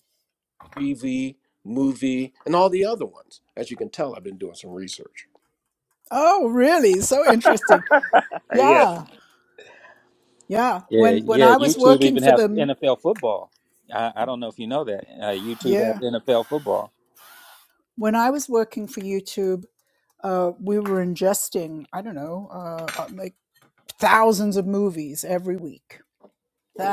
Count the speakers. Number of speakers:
3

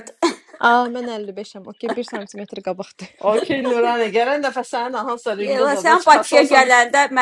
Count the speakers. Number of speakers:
3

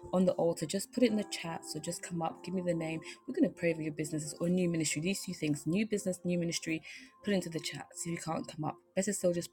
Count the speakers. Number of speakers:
1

